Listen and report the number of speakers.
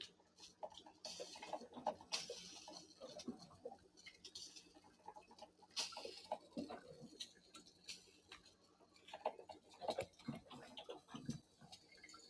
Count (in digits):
0